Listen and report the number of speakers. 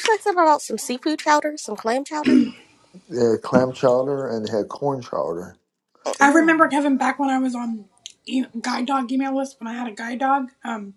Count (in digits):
3